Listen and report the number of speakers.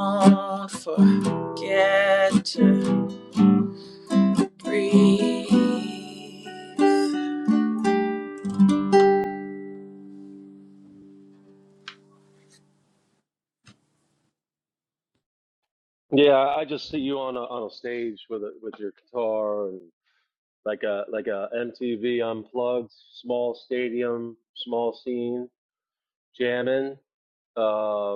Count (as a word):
two